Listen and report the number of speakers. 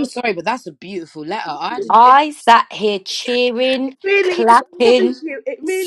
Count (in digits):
3